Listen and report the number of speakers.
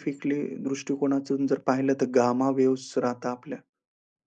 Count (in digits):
1